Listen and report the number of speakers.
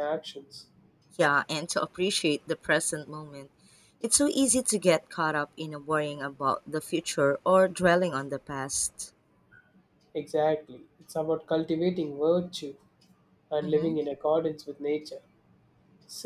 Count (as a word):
two